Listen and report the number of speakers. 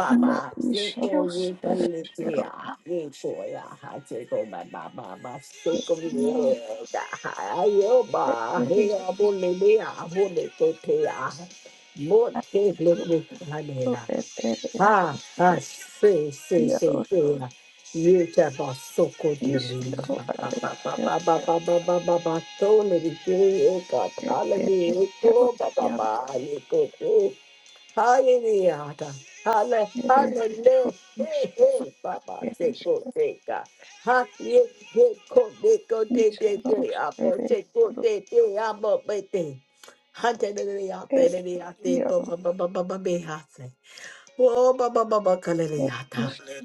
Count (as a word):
two